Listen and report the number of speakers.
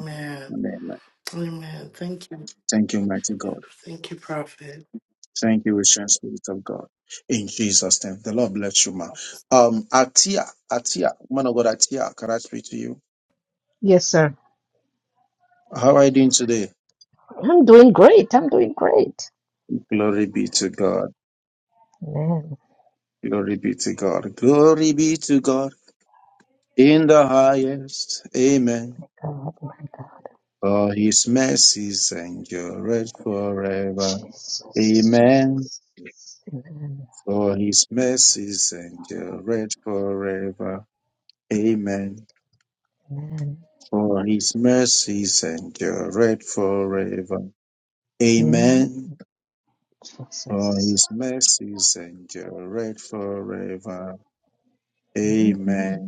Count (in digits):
3